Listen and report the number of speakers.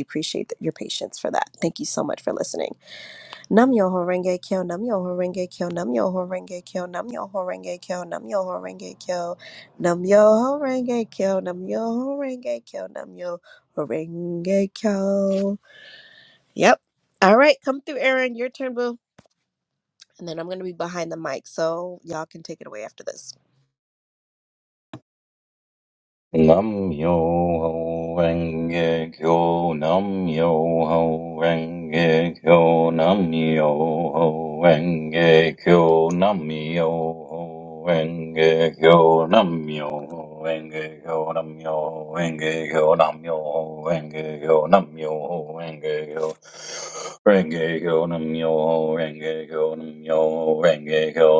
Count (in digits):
2